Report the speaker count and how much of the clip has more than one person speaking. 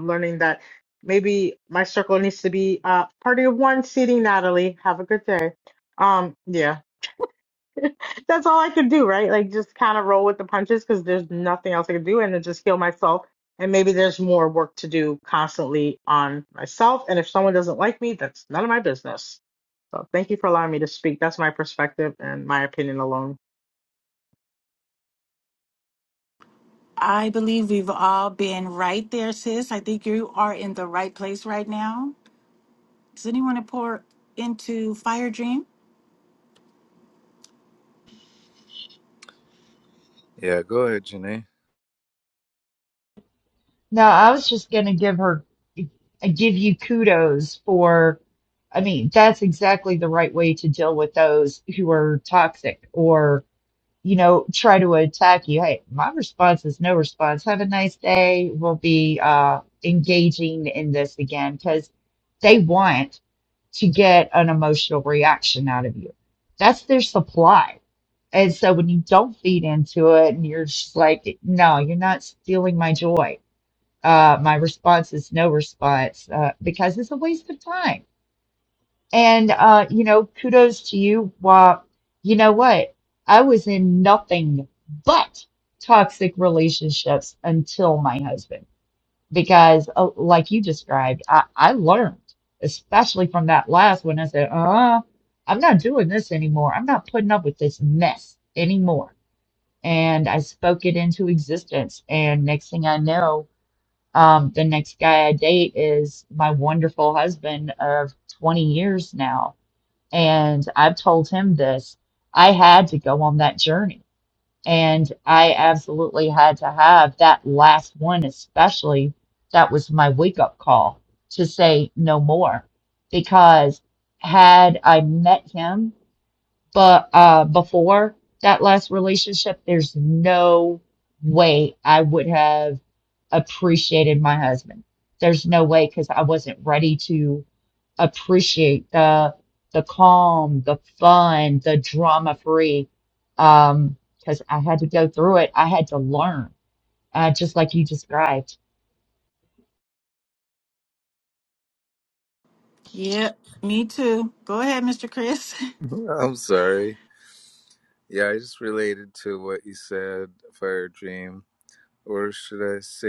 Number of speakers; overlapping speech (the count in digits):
4, no overlap